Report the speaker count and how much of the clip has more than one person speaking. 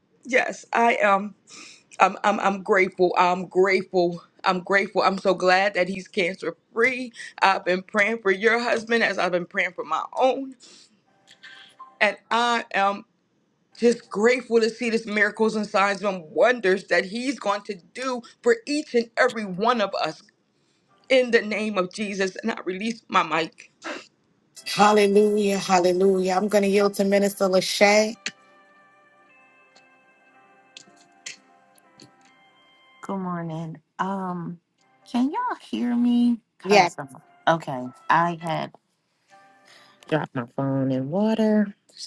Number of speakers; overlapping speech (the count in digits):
3, about 1%